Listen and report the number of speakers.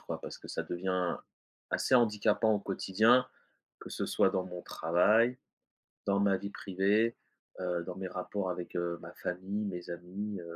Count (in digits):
1